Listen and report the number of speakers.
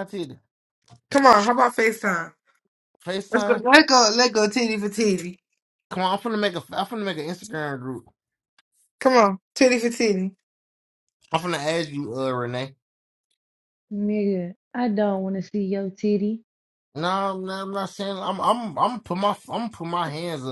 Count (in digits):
3